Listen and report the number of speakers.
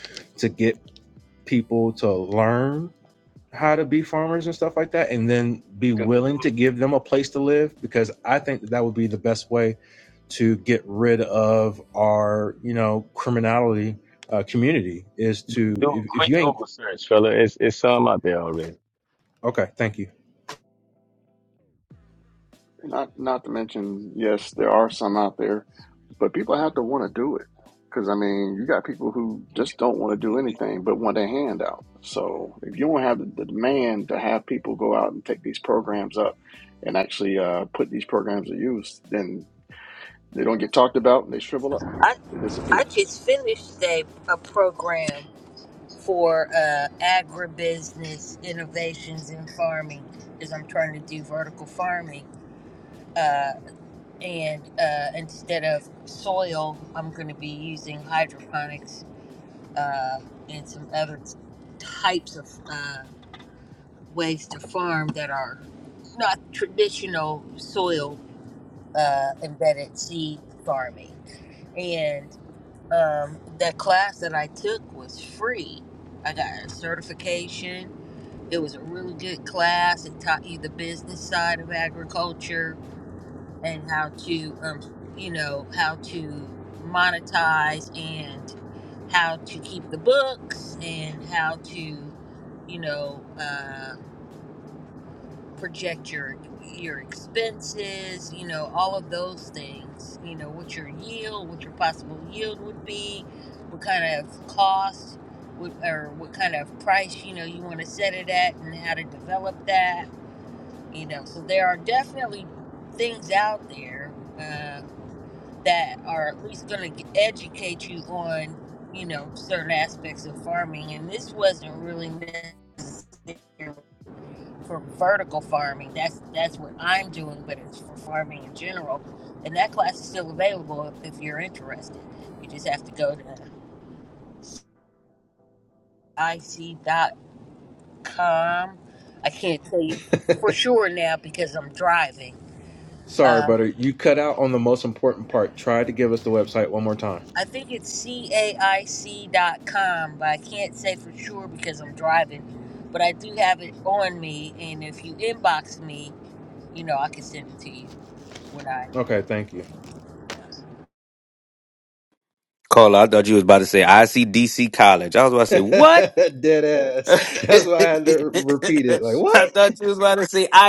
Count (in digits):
5